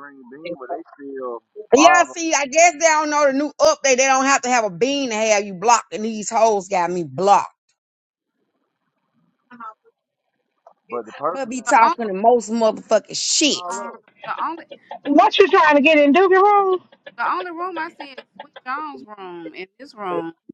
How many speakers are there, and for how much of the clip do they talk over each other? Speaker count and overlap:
4, about 8%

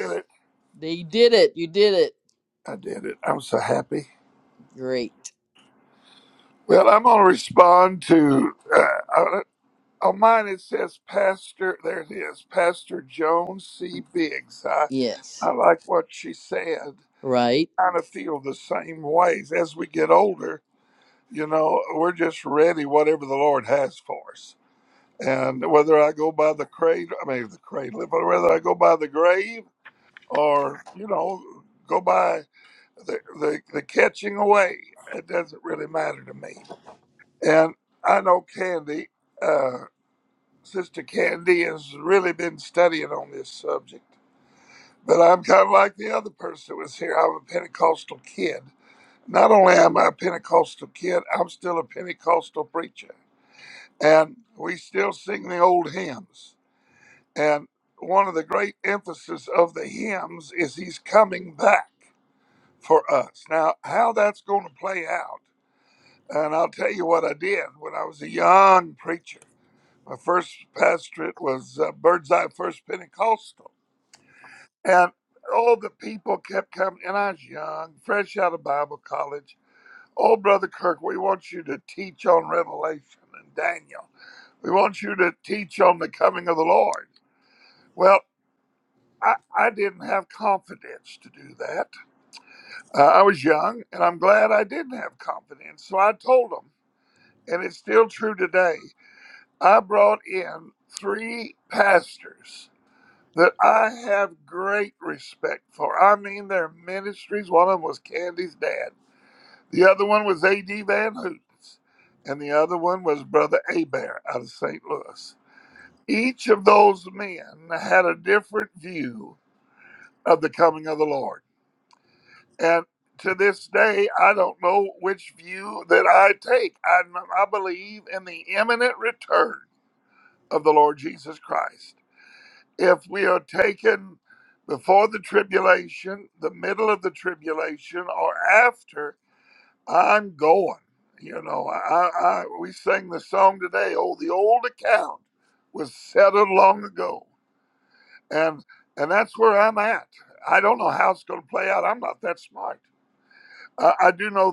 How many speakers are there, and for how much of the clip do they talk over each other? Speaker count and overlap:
2, no overlap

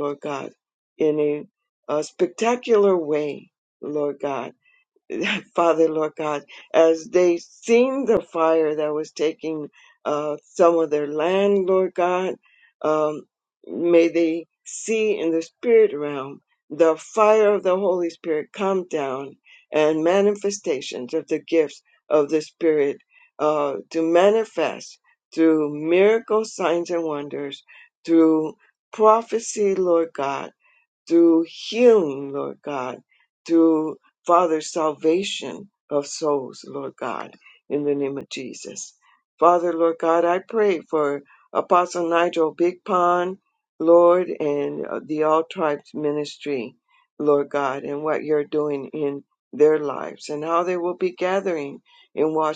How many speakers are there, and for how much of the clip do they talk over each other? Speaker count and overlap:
1, no overlap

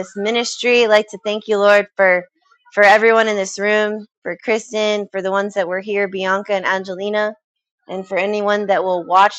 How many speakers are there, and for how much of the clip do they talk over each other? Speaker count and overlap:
1, no overlap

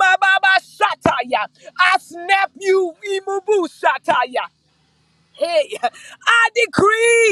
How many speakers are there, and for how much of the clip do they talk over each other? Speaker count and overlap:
1, no overlap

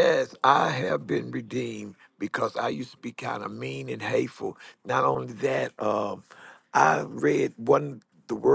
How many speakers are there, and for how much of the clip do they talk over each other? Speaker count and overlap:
1, no overlap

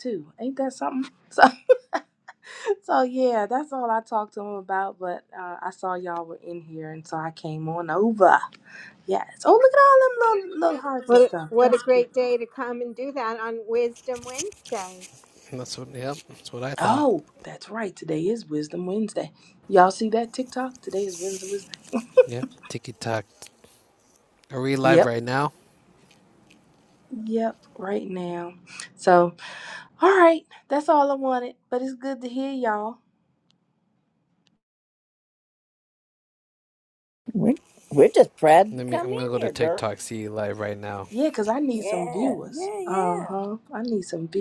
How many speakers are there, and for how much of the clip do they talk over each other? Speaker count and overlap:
4, about 9%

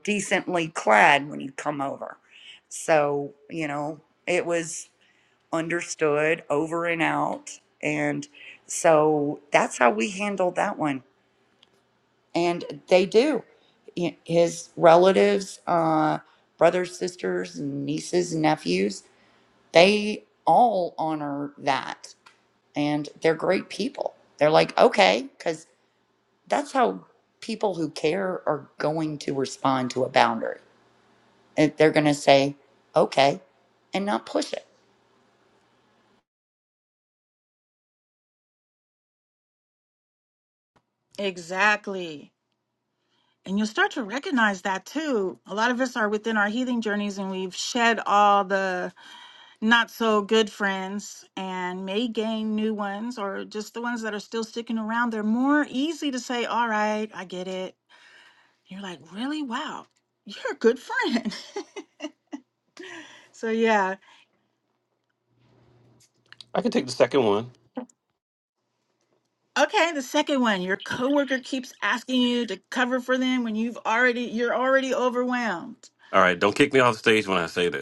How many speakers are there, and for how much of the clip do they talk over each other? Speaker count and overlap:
3, no overlap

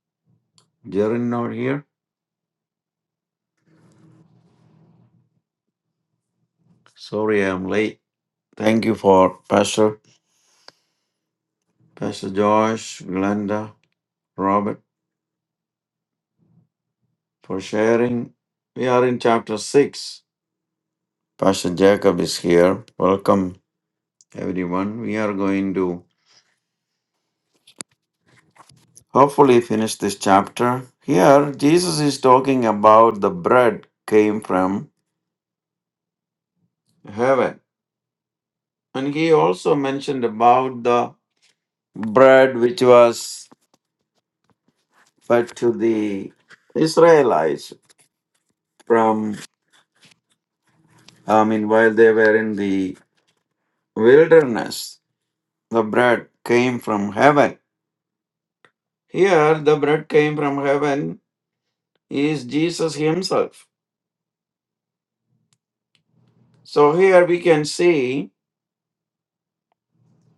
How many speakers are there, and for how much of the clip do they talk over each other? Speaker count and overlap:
1, no overlap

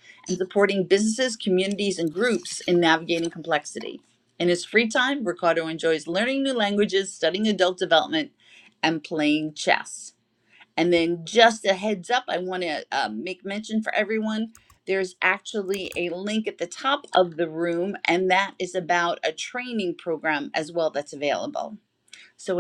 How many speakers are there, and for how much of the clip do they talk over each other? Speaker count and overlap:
1, no overlap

